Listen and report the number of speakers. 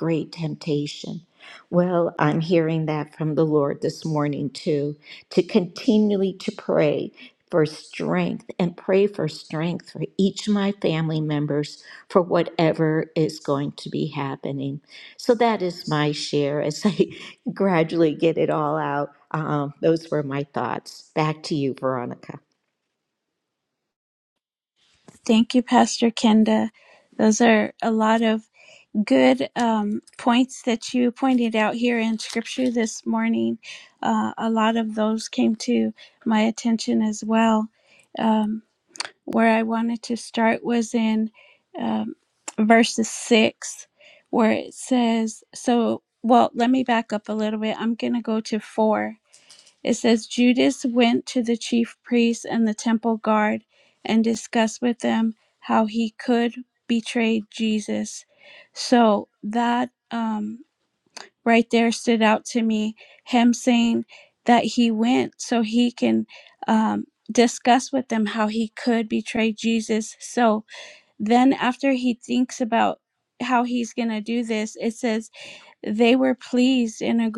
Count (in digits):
2